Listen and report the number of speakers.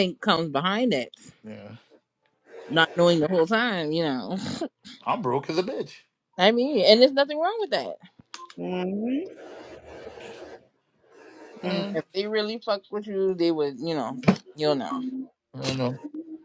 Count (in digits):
3